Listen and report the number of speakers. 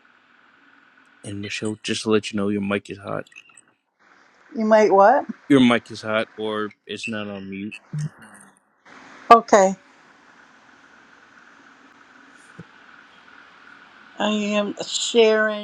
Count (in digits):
2